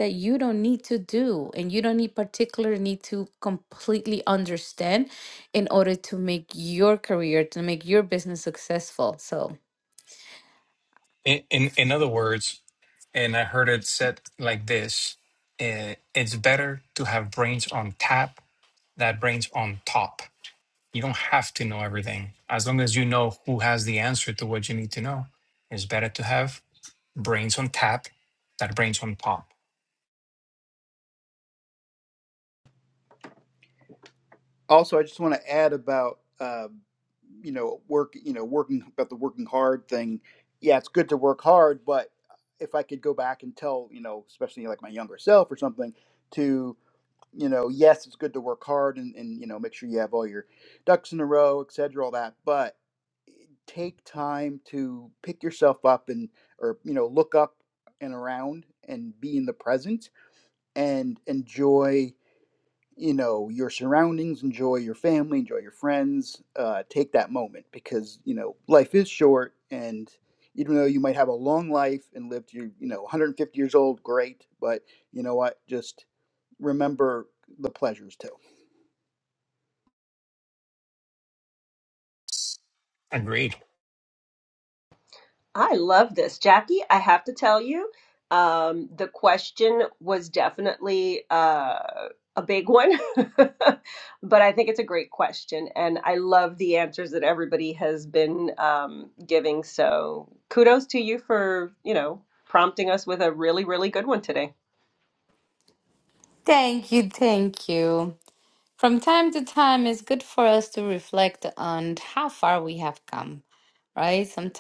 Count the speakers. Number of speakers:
4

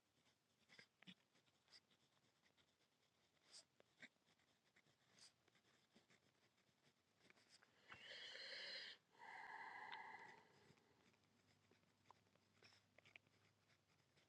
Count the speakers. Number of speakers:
0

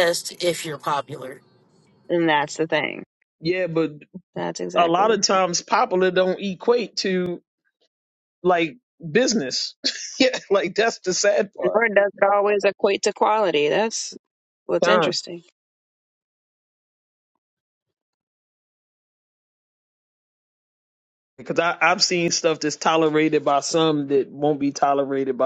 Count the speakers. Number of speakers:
3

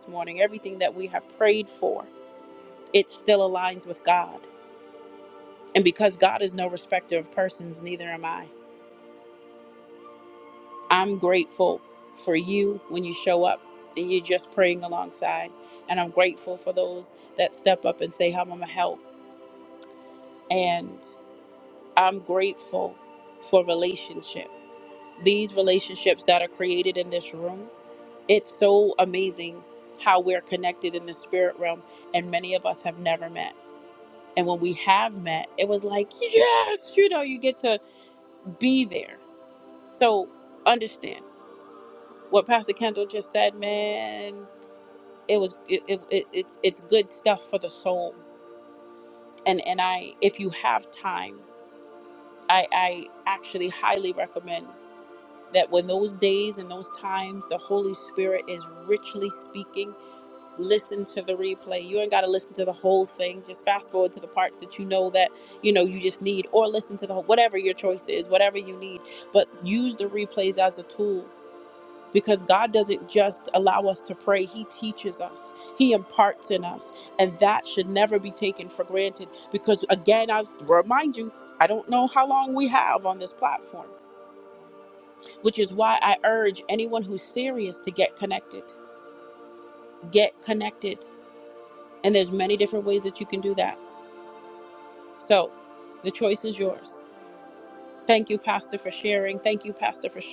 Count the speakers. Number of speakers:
1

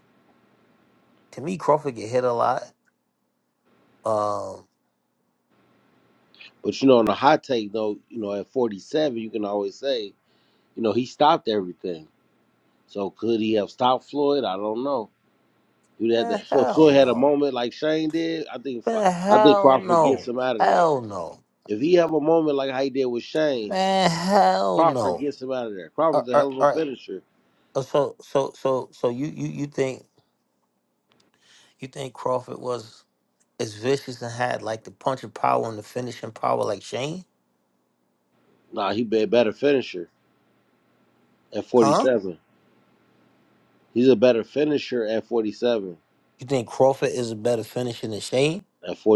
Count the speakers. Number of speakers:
2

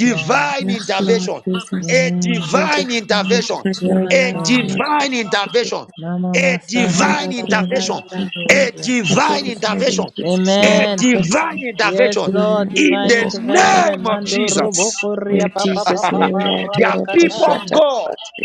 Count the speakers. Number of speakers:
3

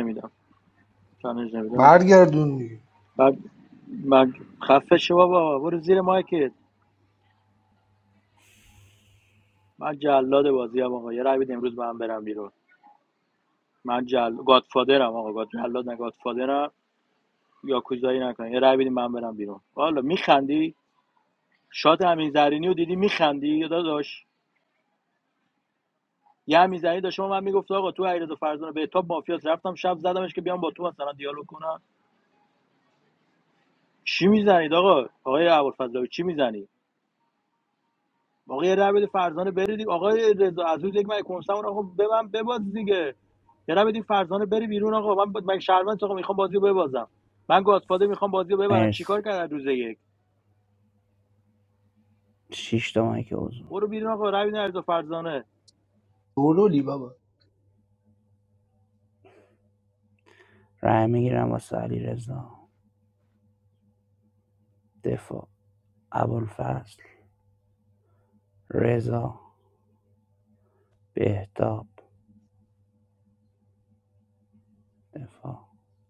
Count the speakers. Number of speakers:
3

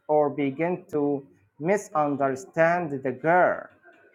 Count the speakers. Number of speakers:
1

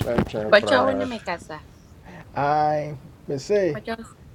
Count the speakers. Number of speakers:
3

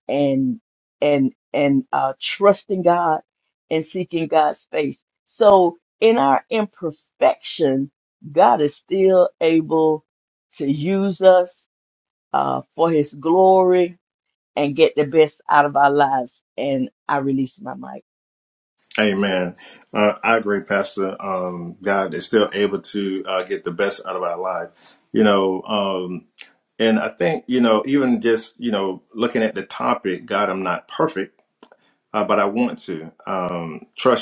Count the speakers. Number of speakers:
2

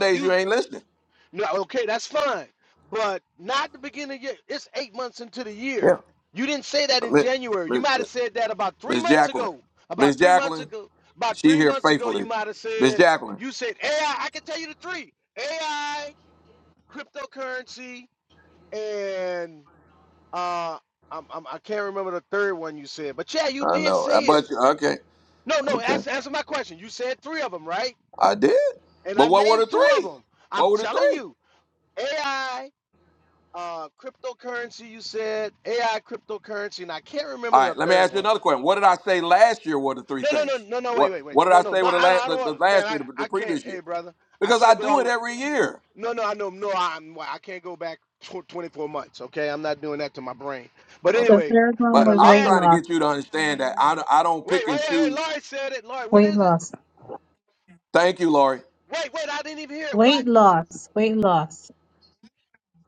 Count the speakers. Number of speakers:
3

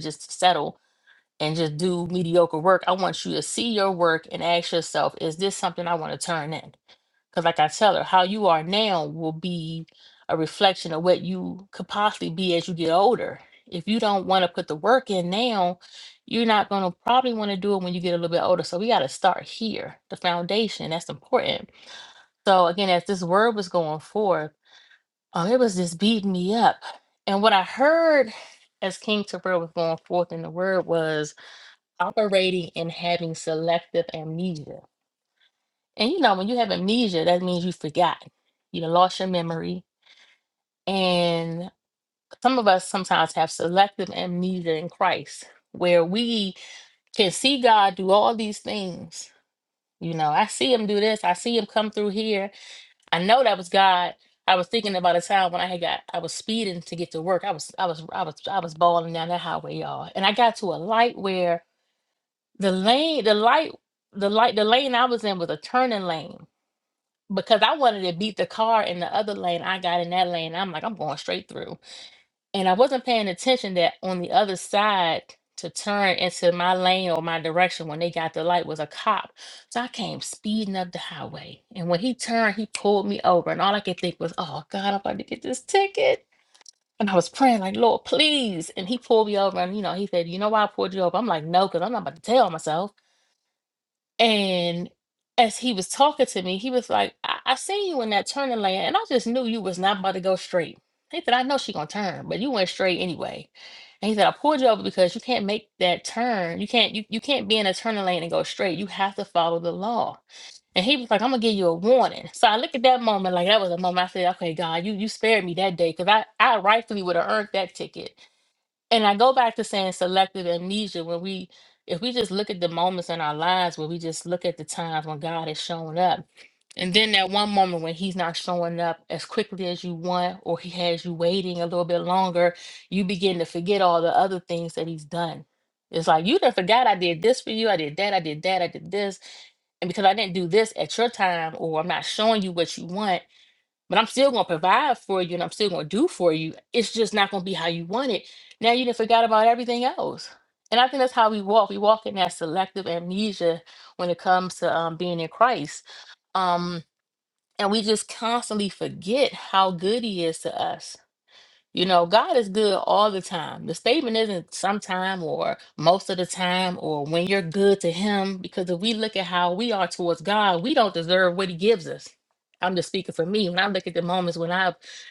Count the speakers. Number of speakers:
1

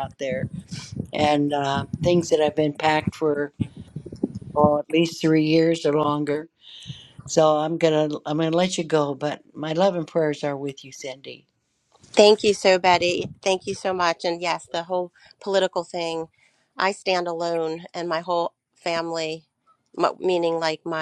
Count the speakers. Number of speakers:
2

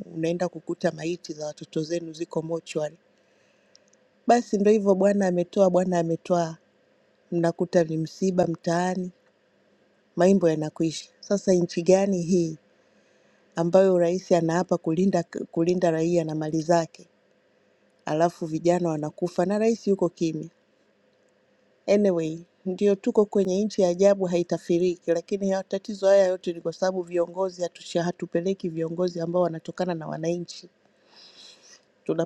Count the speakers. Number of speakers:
1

